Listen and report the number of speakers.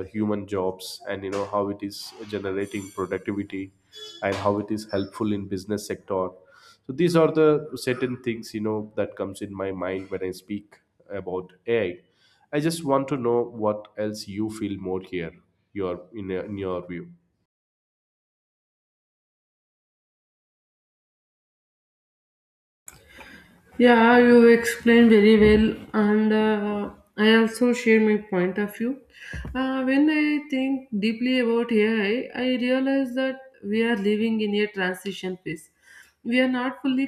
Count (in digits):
2